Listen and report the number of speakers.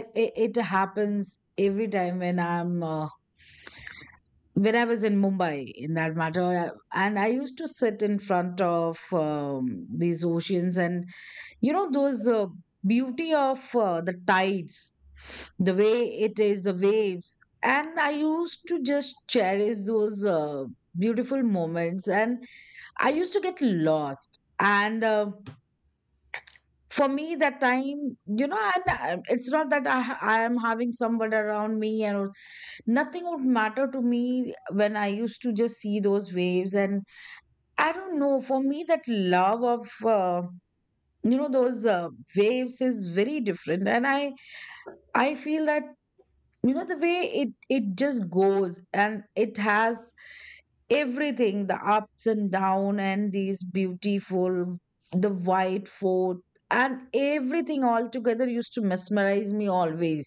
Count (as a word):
one